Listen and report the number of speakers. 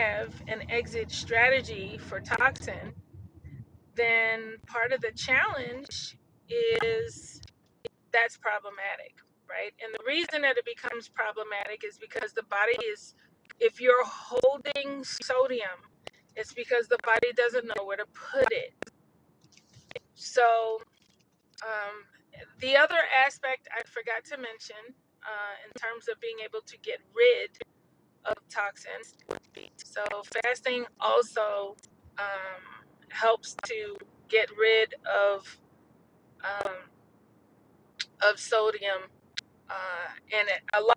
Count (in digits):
1